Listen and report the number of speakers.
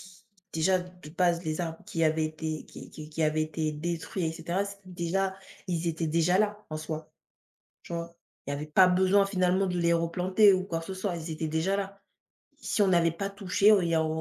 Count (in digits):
1